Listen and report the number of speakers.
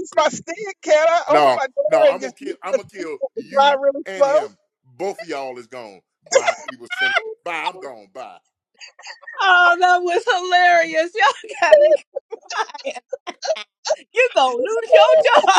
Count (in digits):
3